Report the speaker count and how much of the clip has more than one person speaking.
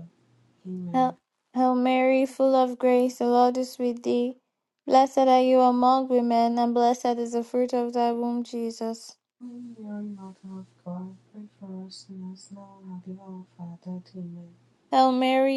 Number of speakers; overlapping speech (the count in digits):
2, about 1%